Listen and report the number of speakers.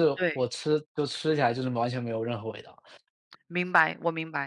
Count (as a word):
two